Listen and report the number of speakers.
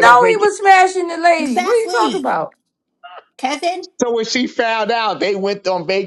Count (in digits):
3